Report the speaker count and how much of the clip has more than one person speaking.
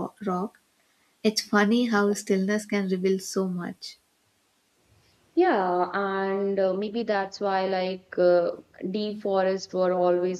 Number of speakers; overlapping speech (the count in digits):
2, no overlap